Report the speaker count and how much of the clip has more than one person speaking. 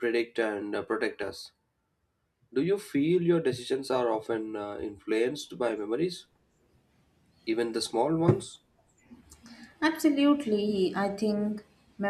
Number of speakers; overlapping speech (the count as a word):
two, no overlap